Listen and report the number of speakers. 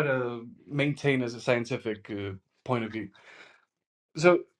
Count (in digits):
1